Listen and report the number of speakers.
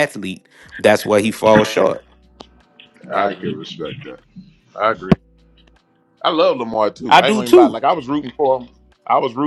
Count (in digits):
3